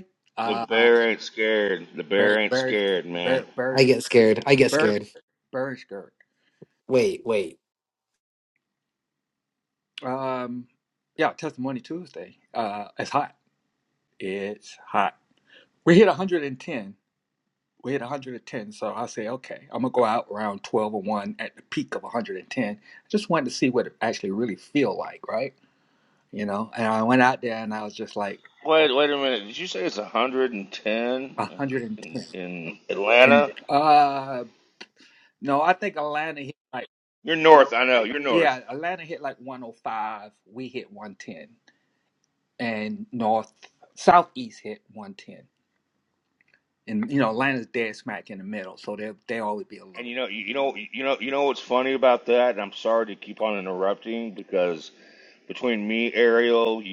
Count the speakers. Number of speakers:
three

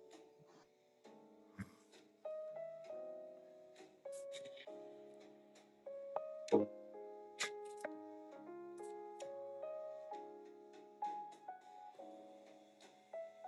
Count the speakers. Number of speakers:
zero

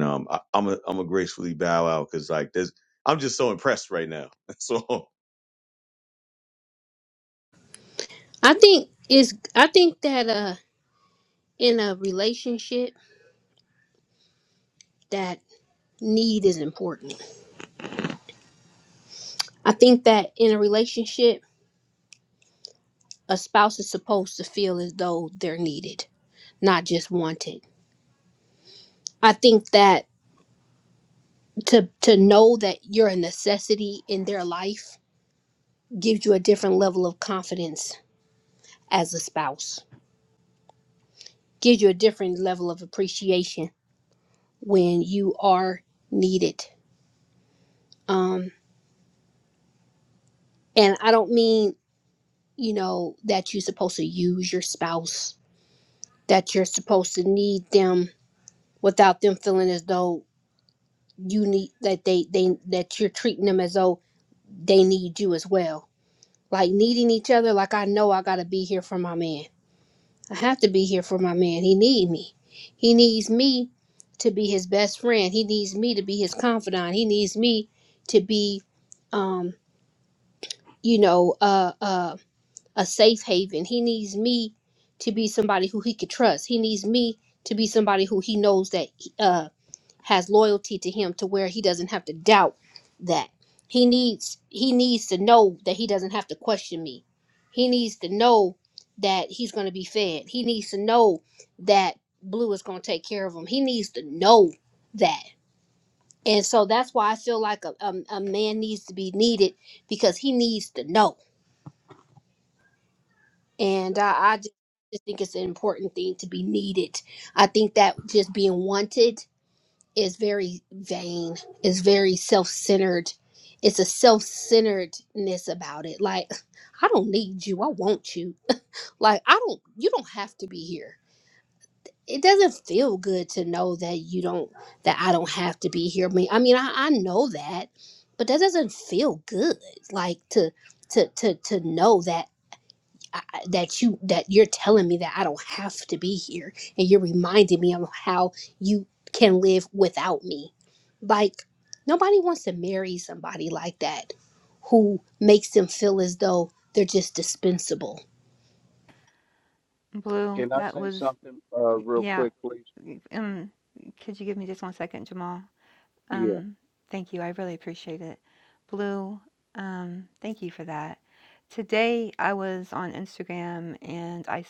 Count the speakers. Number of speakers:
four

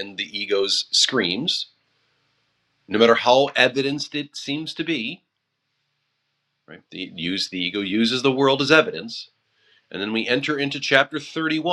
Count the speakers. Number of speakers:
one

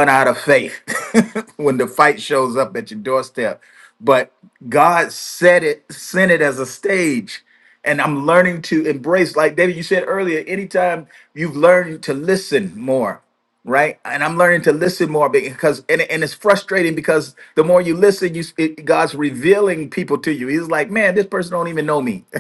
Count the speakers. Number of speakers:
one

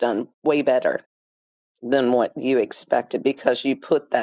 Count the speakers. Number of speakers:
one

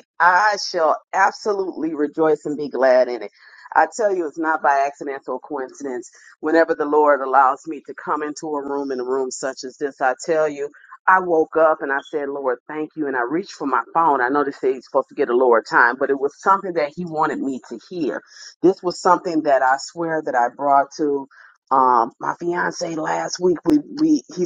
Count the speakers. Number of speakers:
one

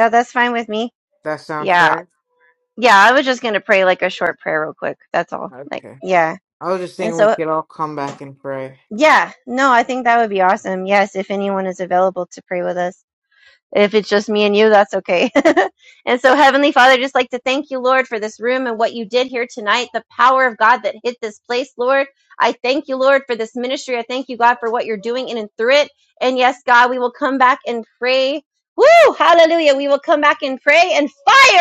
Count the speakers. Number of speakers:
two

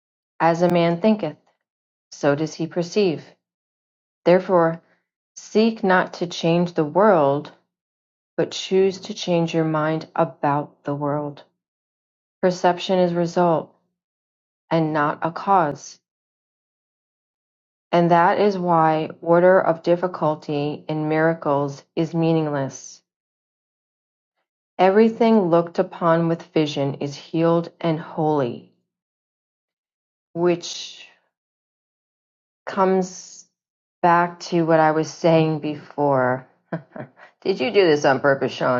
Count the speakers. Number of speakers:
one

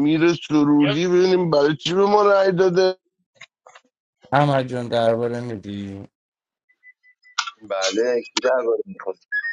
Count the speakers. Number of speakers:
three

